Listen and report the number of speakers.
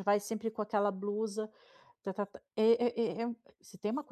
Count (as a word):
one